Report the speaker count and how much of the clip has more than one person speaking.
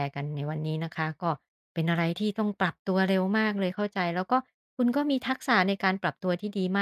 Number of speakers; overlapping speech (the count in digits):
1, no overlap